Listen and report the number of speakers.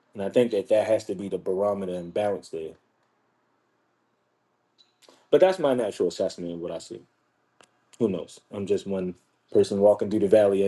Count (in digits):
1